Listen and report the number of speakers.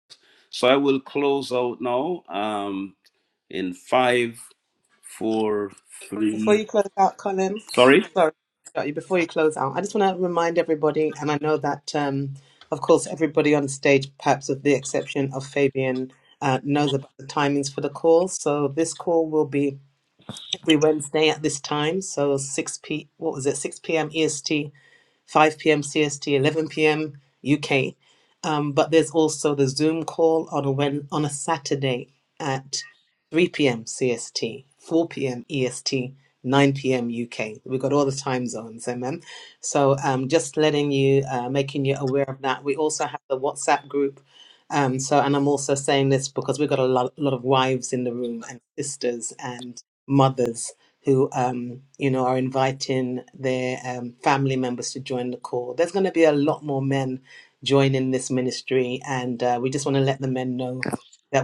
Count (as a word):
two